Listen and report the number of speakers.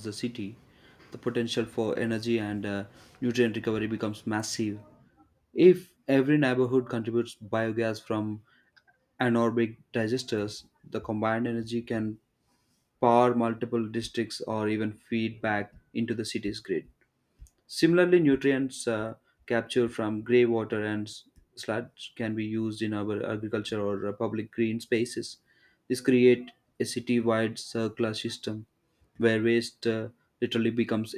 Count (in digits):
1